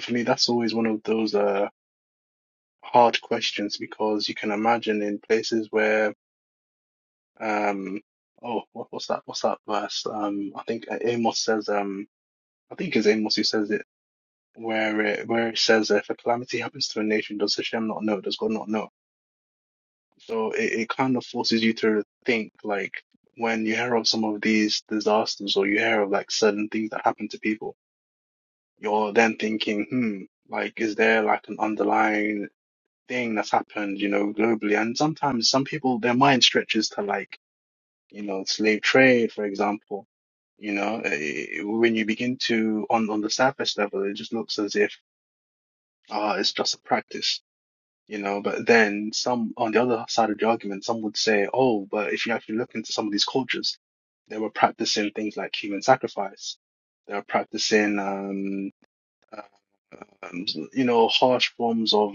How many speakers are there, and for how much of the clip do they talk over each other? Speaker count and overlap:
1, no overlap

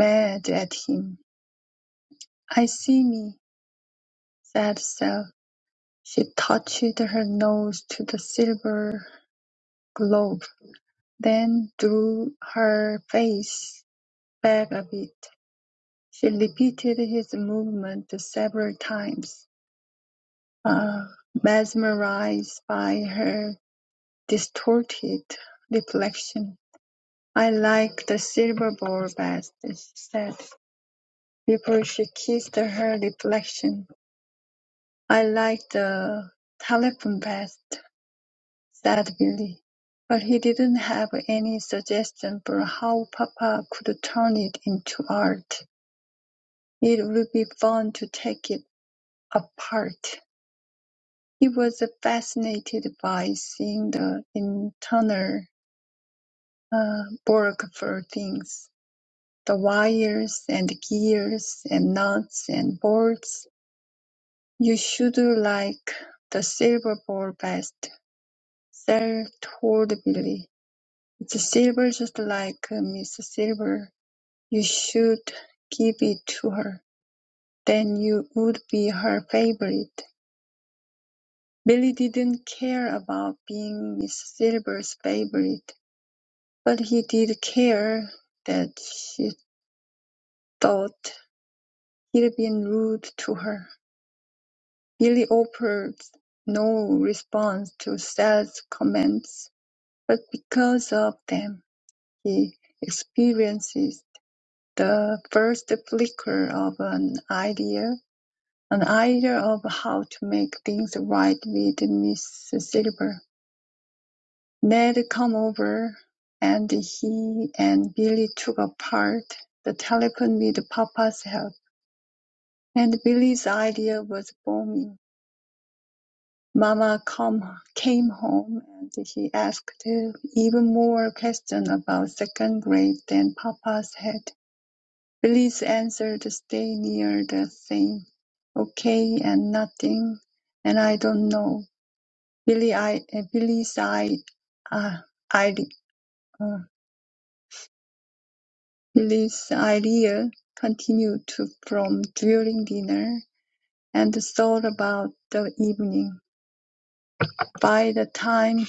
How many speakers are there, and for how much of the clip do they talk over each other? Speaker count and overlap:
1, no overlap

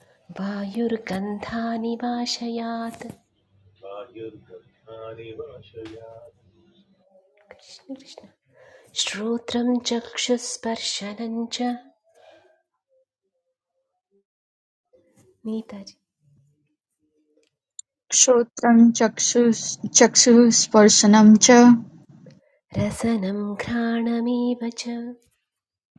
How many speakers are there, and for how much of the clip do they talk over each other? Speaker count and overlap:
3, no overlap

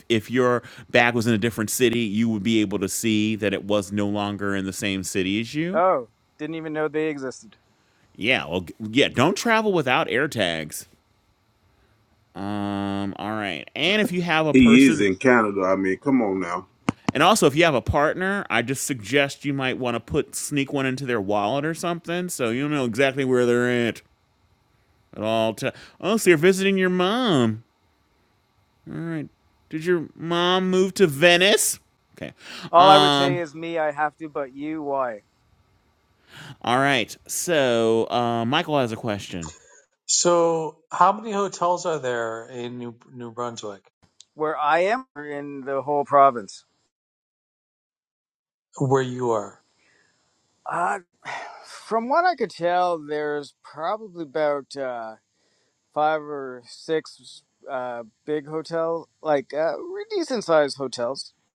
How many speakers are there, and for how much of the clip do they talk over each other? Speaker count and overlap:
4, about 2%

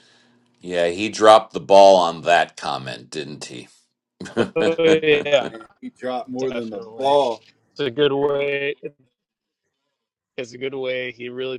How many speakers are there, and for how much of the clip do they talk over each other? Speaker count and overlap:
3, about 7%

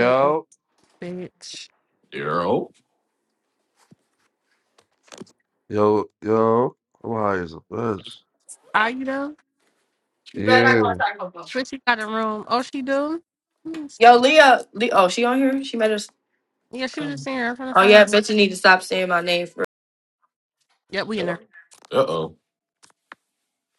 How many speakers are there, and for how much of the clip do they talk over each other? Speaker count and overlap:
4, about 3%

